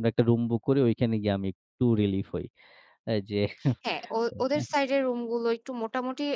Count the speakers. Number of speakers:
2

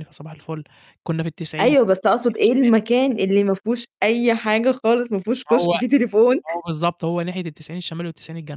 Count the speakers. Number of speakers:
2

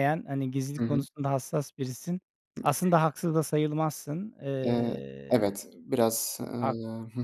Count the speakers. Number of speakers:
2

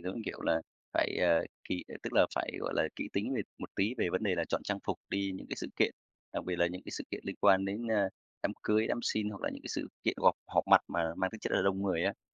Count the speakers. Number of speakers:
1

